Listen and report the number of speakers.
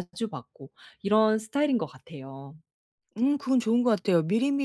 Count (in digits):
2